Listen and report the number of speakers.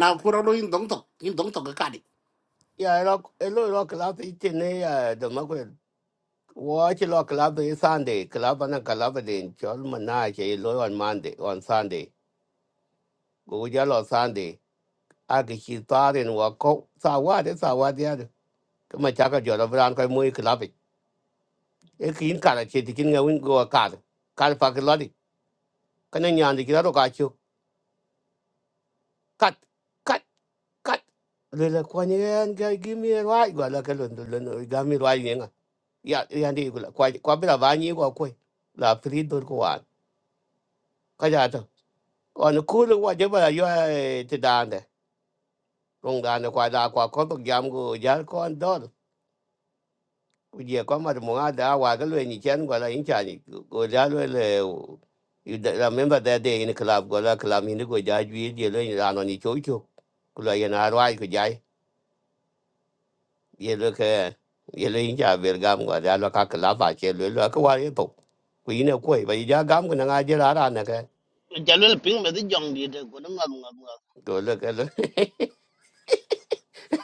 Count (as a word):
three